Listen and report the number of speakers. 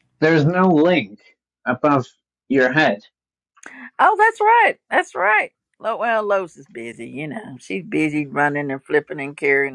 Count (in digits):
2